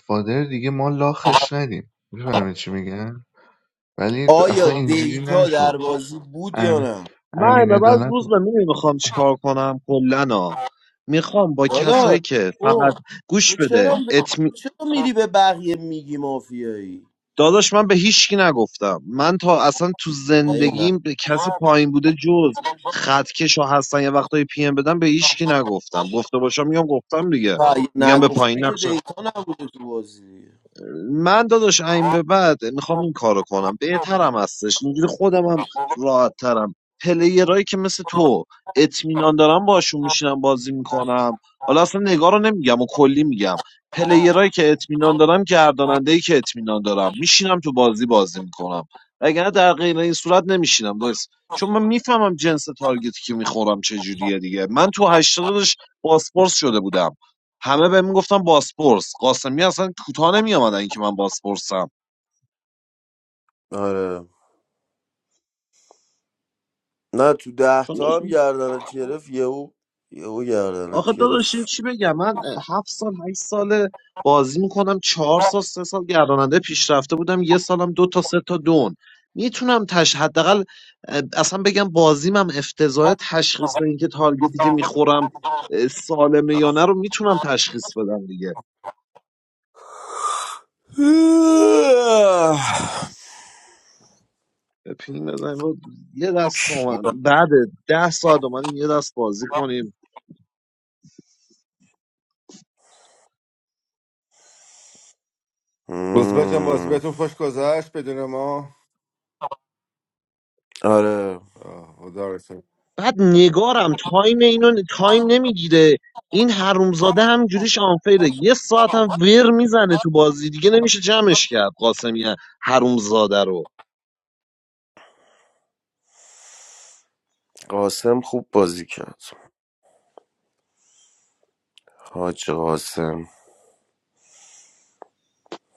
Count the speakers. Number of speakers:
4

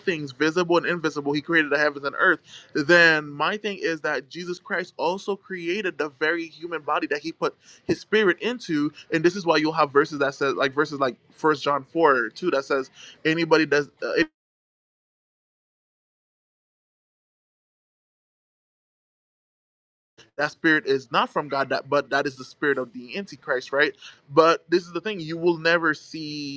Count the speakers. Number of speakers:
1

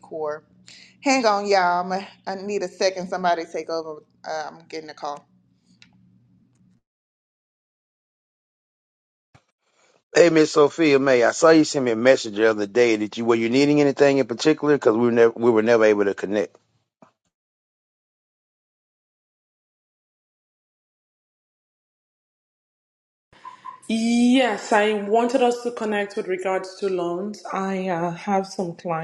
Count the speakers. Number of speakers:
3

